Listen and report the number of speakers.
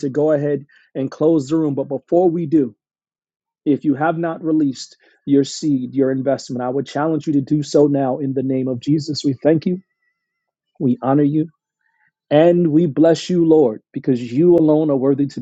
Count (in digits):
1